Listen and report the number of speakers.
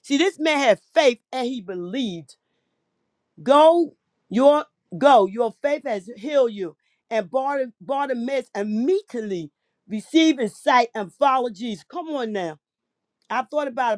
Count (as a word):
one